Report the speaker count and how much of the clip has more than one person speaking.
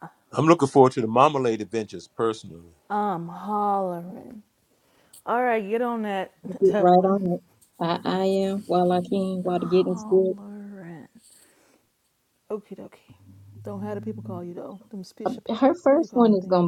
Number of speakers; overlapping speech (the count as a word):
three, about 15%